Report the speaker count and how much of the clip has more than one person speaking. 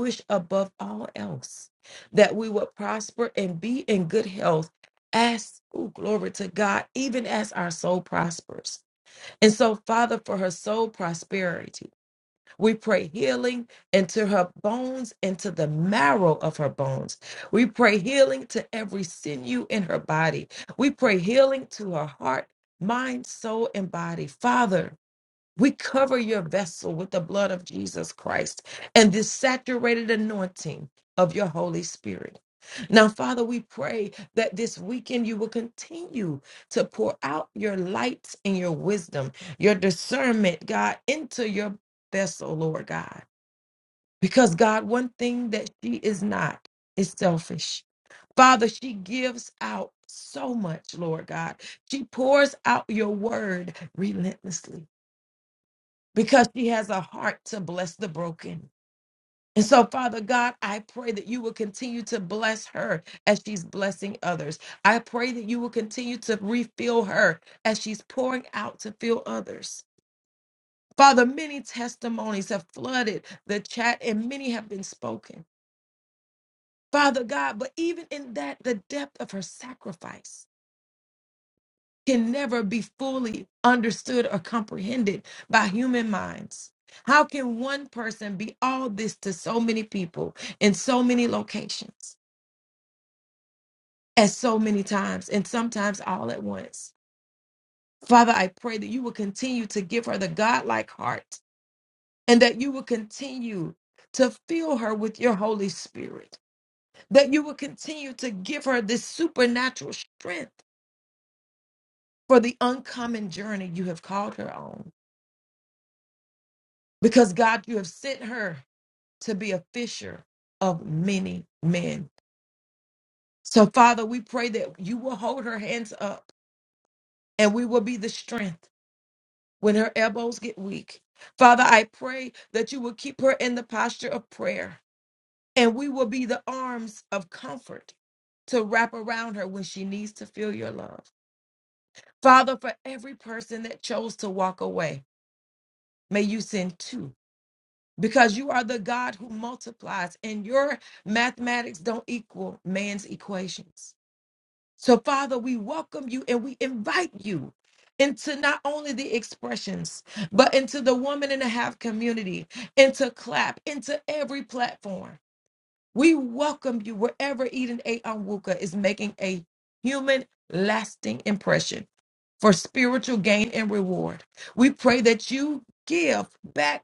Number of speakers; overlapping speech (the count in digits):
1, no overlap